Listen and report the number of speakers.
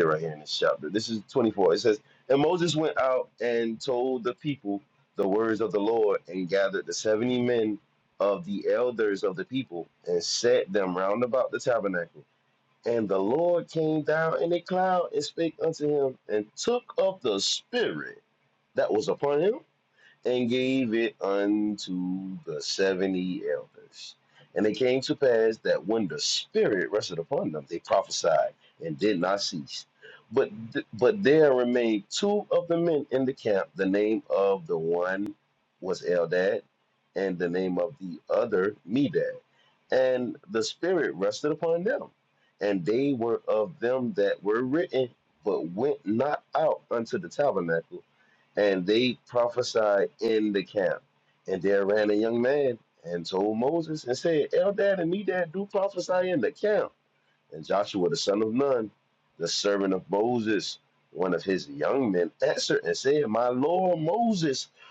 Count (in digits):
1